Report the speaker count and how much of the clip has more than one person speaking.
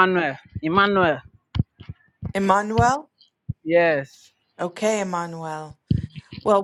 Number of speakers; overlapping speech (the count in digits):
2, no overlap